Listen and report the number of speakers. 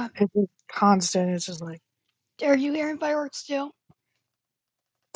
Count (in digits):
2